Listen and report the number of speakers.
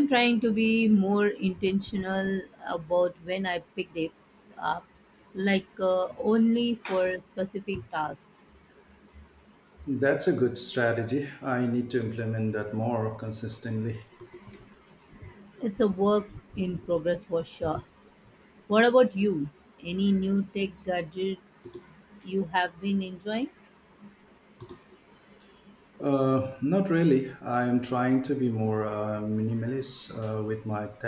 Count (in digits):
2